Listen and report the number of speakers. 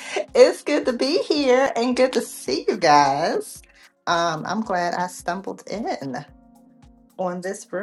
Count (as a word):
one